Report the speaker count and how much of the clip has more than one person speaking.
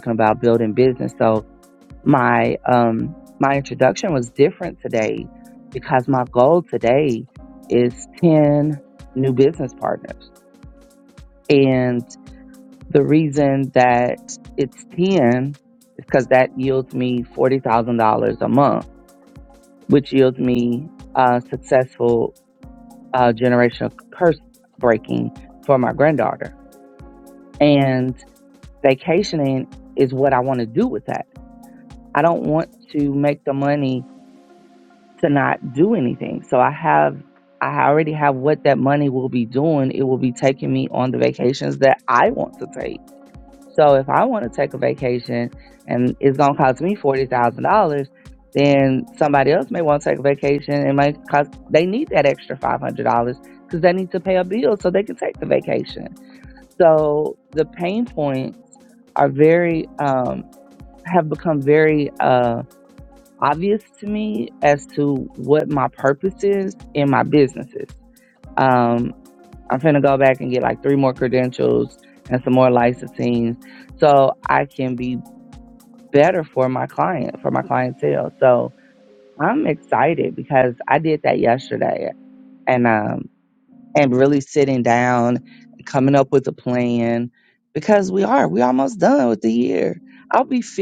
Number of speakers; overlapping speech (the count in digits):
1, no overlap